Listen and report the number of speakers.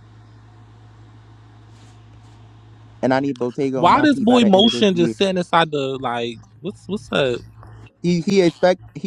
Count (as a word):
two